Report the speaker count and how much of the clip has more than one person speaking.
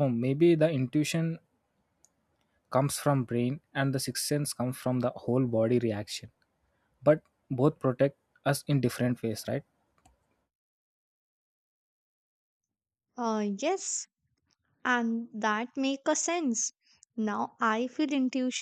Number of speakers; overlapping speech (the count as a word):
two, no overlap